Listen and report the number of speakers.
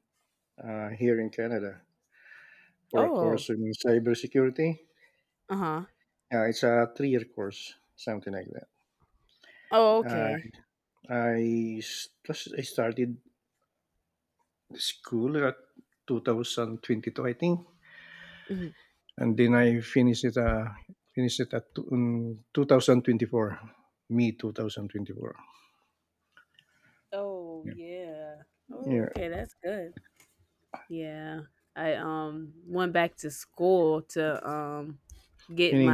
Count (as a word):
two